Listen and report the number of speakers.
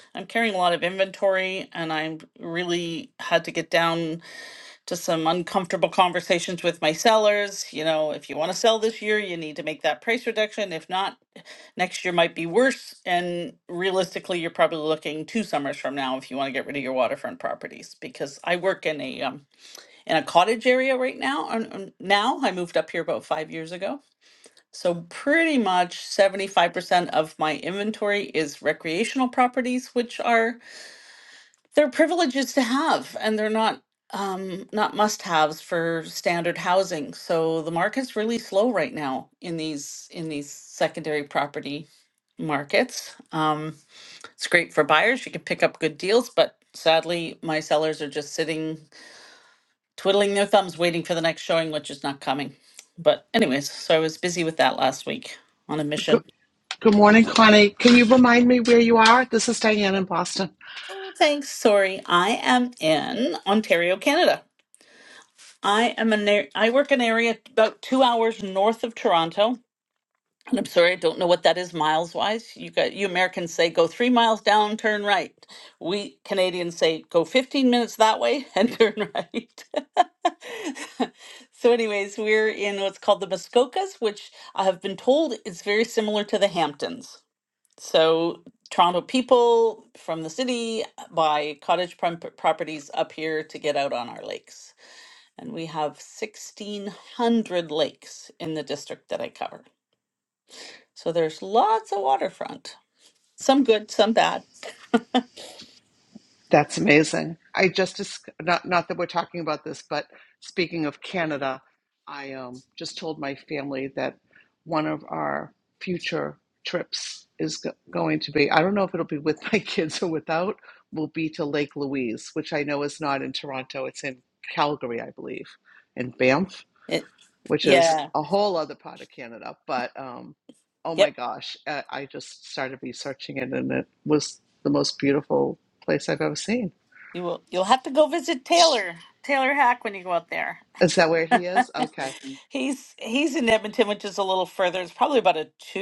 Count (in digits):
2